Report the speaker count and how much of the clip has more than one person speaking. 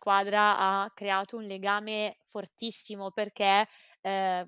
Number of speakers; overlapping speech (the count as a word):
one, no overlap